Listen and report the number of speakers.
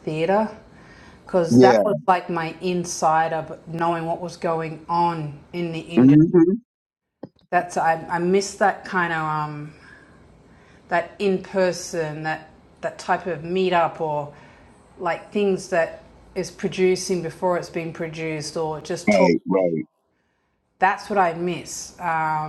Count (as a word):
two